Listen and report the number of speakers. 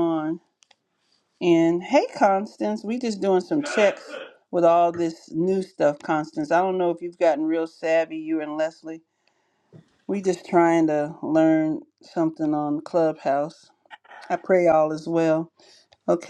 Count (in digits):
1